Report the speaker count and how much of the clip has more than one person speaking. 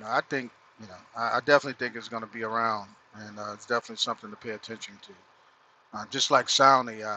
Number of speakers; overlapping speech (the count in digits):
1, no overlap